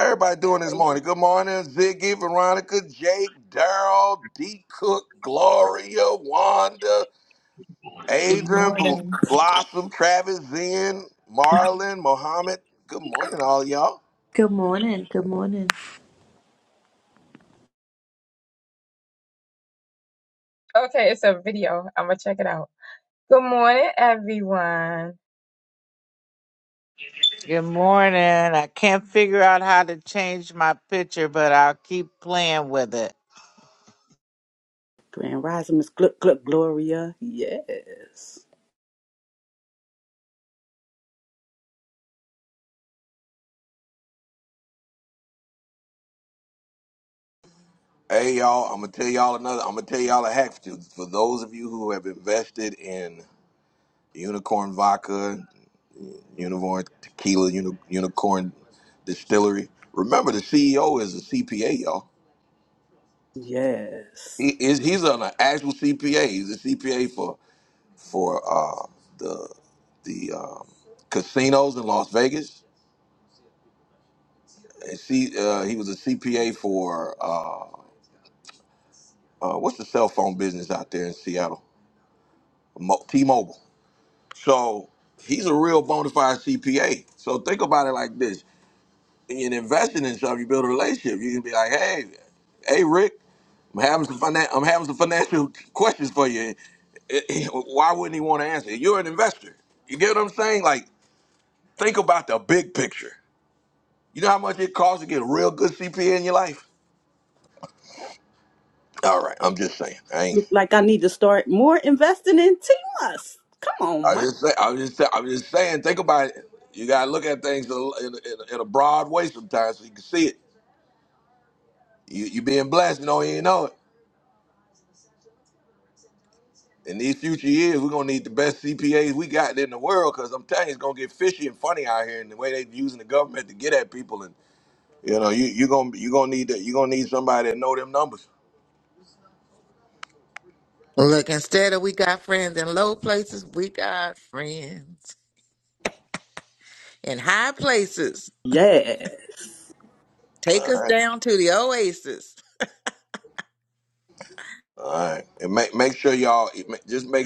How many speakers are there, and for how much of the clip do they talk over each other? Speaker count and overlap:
six, about 1%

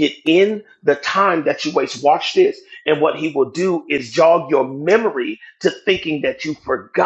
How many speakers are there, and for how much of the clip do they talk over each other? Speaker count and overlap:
one, no overlap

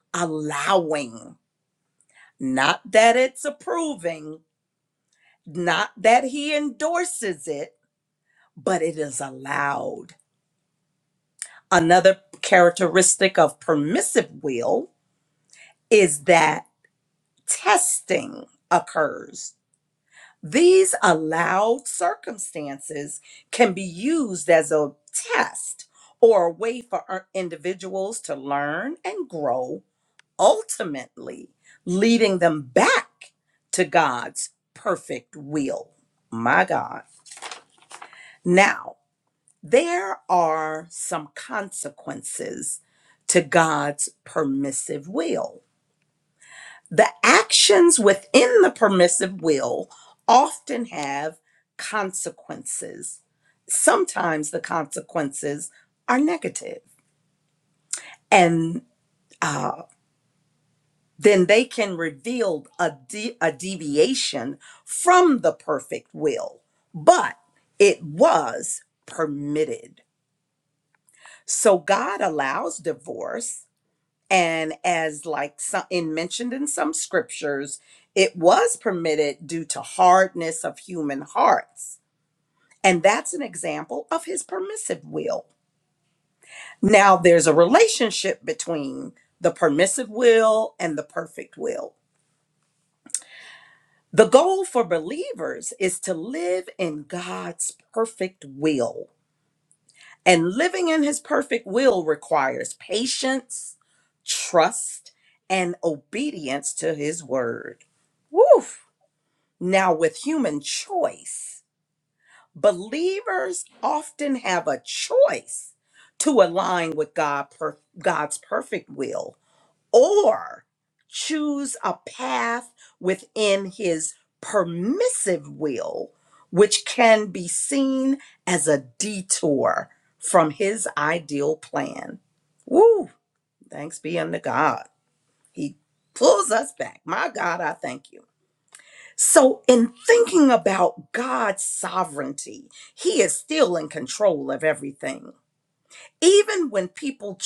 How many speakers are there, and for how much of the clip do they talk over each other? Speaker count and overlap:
one, no overlap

